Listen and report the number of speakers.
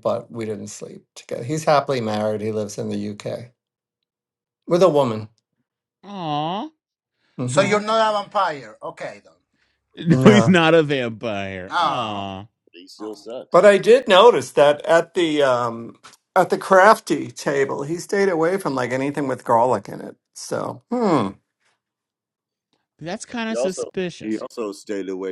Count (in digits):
4